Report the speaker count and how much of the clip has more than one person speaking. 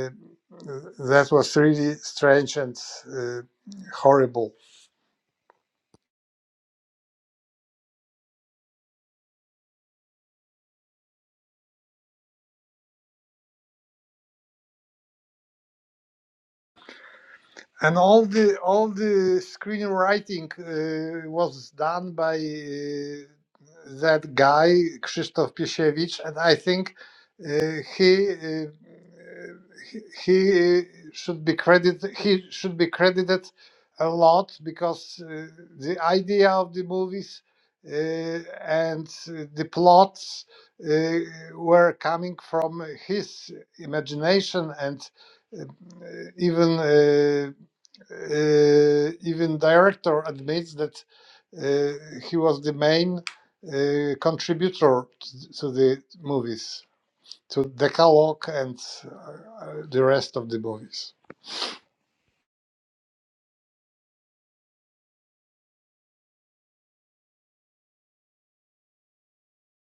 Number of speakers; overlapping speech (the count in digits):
1, no overlap